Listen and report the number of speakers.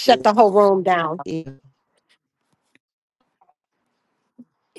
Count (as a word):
one